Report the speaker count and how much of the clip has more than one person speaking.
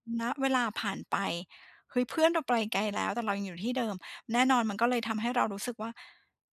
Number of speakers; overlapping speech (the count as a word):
one, no overlap